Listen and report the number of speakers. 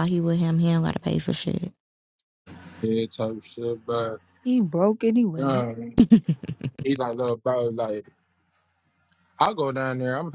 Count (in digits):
3